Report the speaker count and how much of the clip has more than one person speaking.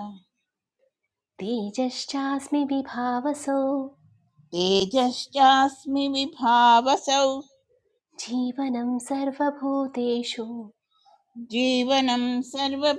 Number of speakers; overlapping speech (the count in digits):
2, no overlap